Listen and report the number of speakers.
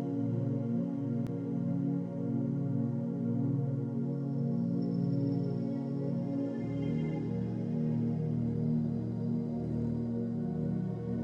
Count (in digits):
0